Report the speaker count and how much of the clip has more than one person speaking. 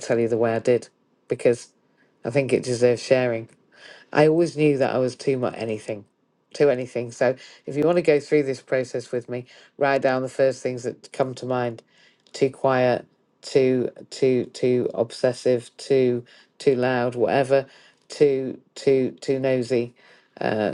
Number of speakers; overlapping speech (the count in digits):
1, no overlap